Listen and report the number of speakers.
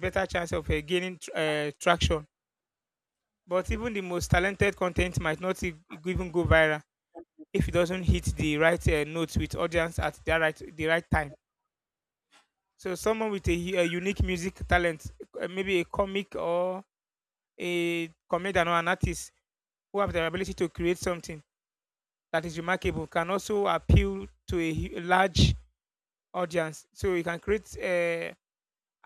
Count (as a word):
one